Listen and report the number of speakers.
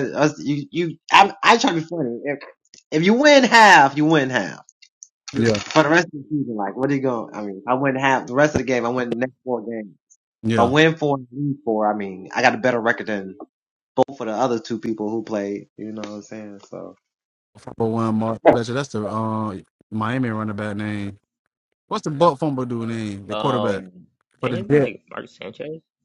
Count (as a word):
three